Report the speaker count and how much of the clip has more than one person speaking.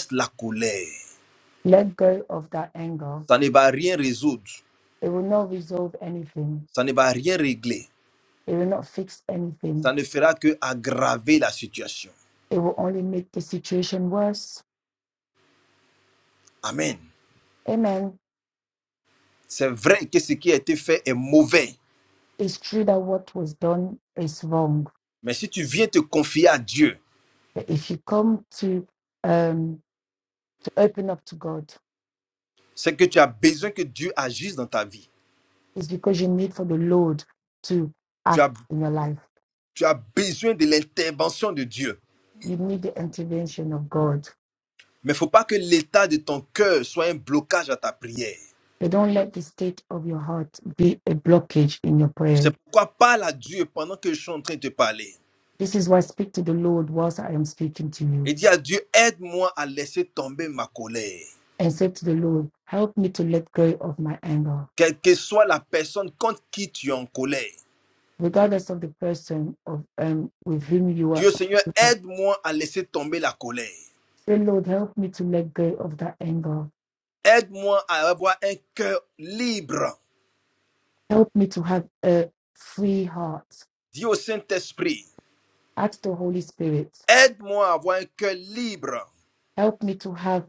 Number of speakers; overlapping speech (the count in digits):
2, about 1%